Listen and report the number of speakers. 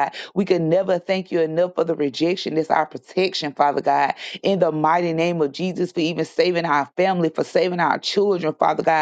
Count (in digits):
1